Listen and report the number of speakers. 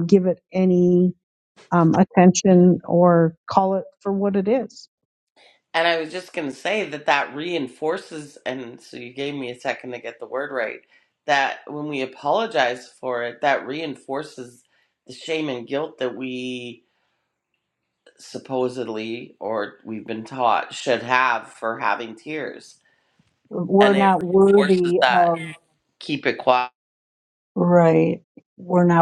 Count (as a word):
three